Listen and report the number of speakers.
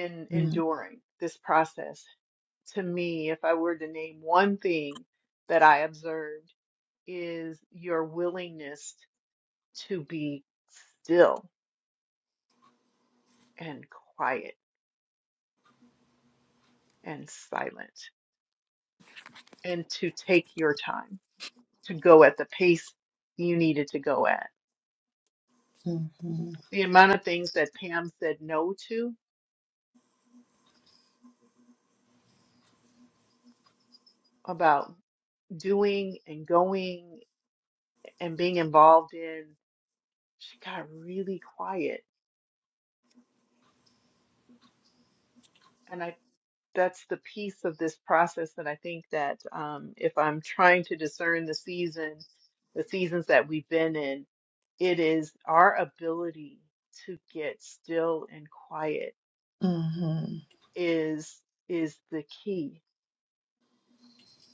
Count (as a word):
two